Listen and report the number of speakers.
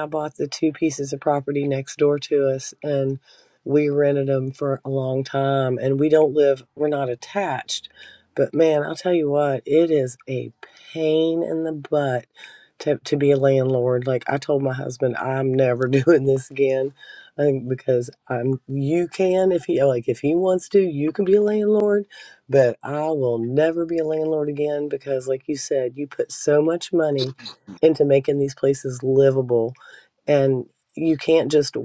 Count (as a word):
one